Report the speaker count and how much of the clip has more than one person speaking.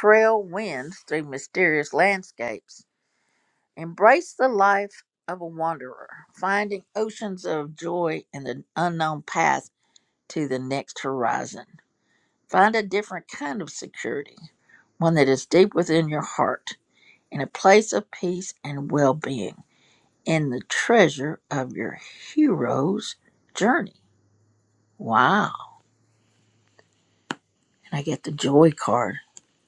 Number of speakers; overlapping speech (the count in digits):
1, no overlap